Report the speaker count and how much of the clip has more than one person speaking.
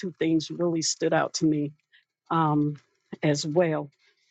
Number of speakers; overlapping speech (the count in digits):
1, no overlap